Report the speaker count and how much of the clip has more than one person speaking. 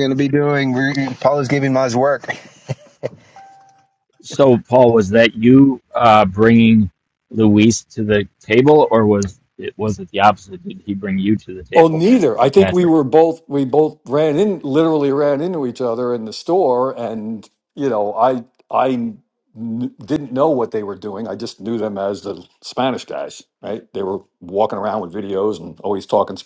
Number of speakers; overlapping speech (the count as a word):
three, about 3%